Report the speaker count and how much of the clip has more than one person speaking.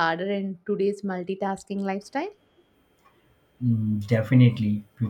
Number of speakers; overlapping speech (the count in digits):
2, no overlap